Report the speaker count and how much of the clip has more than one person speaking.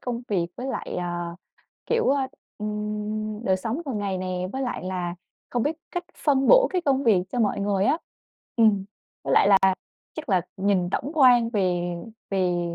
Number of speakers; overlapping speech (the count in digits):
1, no overlap